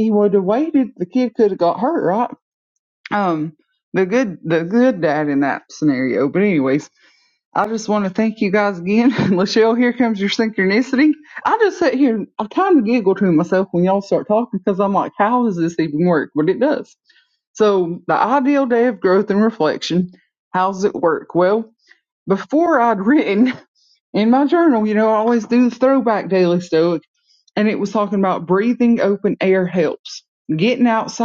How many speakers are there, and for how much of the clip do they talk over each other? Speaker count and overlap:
1, no overlap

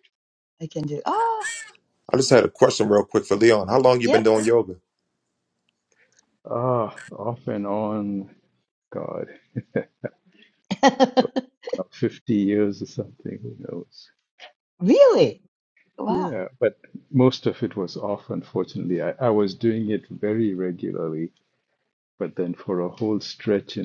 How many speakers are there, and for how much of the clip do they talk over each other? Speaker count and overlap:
3, about 2%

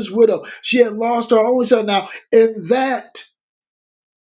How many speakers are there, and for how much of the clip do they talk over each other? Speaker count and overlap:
1, no overlap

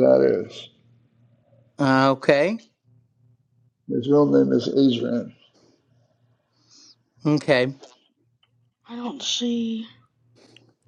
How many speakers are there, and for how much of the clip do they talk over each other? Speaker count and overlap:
3, no overlap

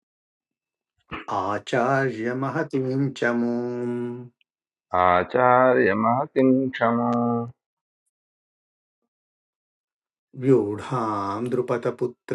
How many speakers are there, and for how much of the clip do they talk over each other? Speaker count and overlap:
2, no overlap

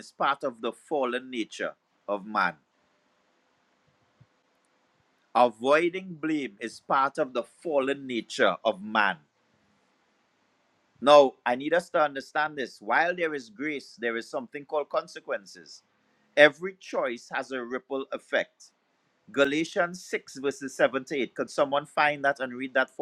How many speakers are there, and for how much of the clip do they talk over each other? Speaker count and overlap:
1, no overlap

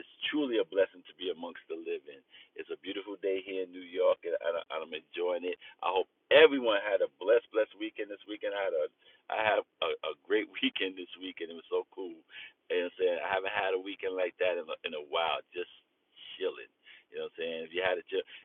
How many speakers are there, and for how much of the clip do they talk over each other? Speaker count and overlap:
1, no overlap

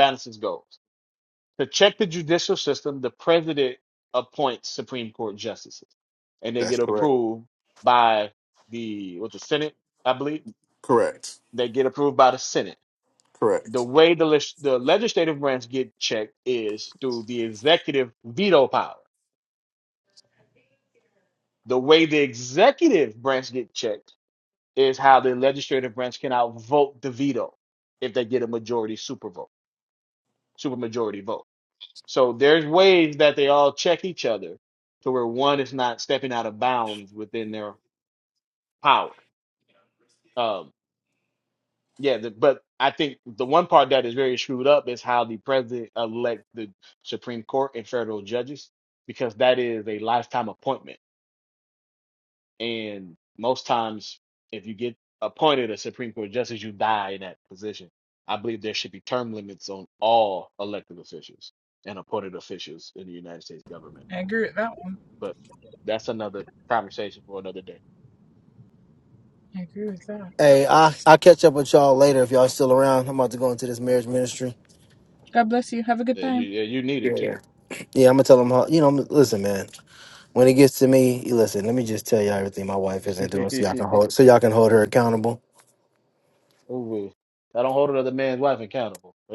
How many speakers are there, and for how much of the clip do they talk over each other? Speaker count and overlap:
4, about 1%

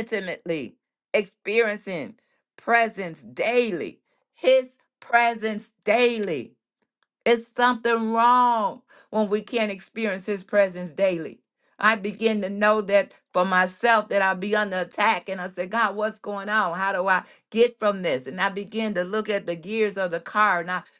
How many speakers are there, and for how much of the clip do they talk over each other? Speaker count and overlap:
1, no overlap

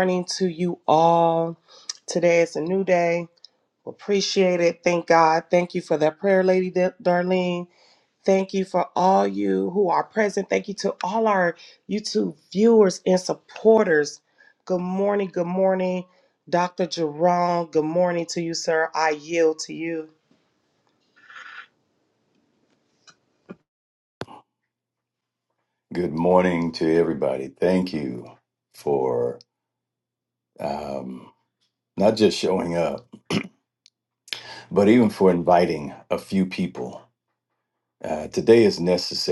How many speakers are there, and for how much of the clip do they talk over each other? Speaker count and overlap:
2, no overlap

